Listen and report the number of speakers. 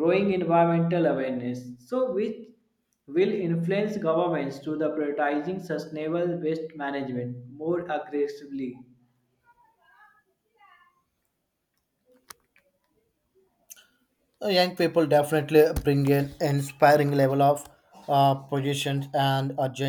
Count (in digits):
2